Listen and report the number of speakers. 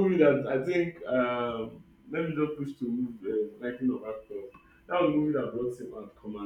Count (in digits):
1